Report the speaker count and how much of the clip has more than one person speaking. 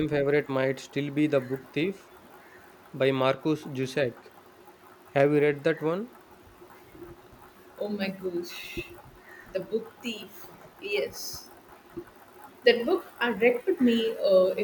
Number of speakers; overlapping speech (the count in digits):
2, no overlap